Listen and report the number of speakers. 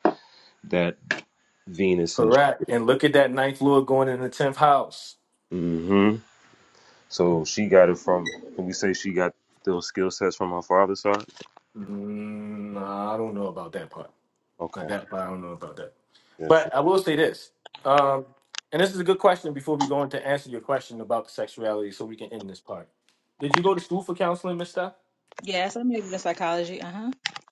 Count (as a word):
three